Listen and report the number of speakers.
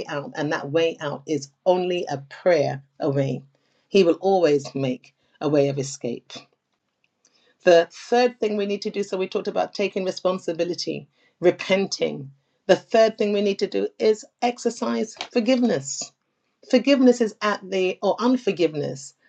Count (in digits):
1